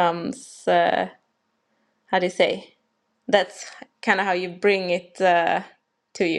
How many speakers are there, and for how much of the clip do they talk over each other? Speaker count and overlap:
one, no overlap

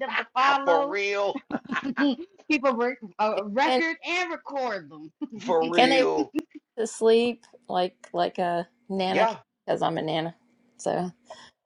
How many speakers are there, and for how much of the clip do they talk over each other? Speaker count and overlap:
three, about 9%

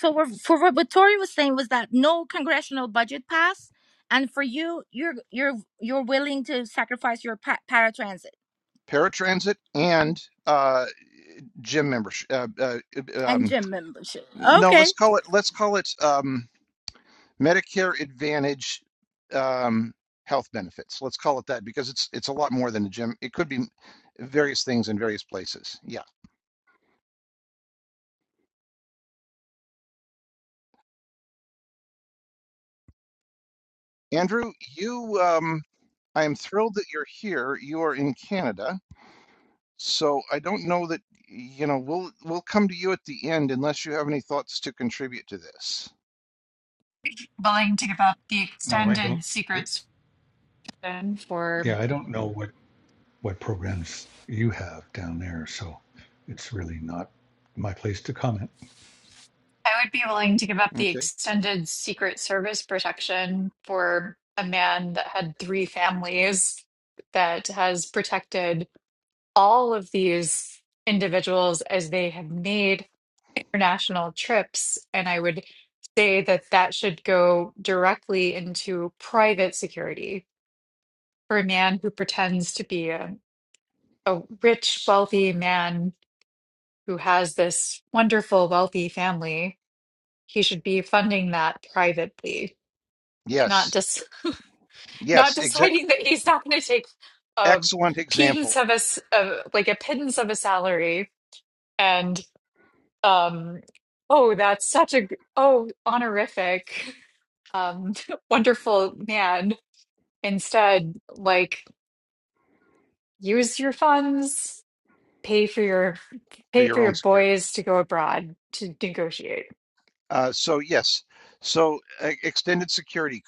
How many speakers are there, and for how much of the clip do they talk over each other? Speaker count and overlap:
four, about 3%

